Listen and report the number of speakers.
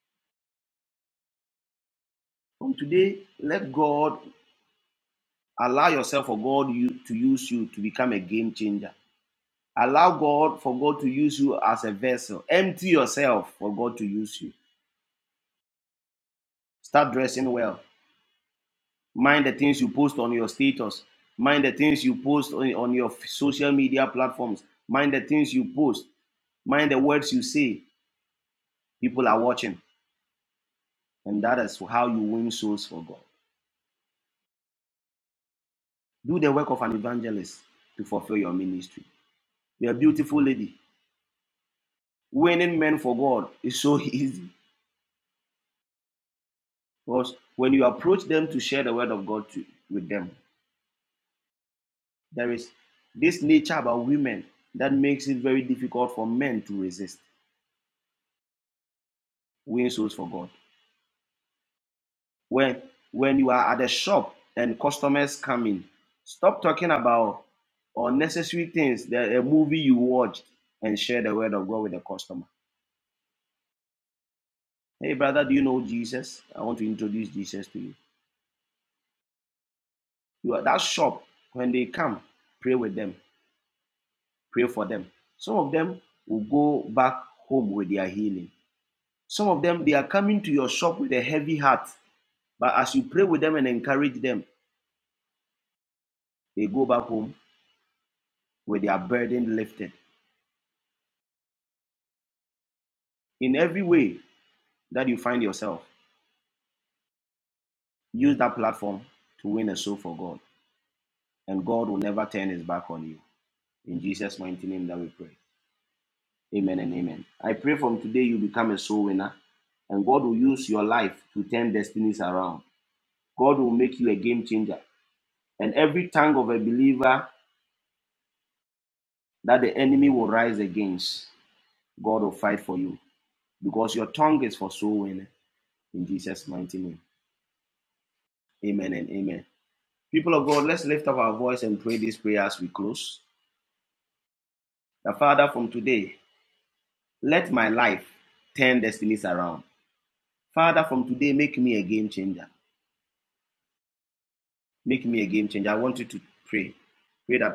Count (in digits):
1